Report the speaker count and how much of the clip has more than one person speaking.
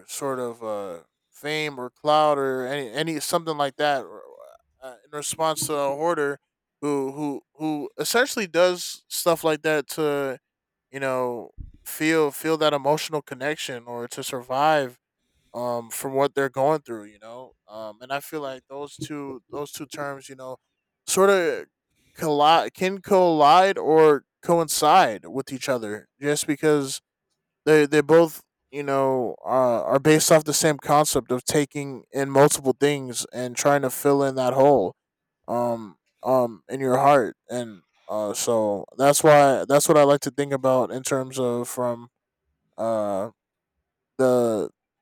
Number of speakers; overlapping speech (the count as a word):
one, no overlap